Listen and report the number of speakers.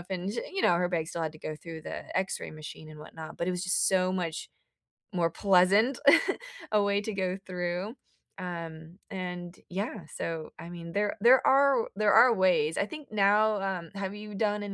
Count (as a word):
one